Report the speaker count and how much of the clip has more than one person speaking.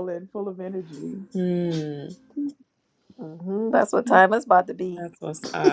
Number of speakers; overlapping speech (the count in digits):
3, about 1%